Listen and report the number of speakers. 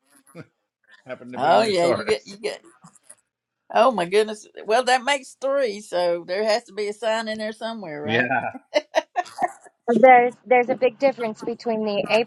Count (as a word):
three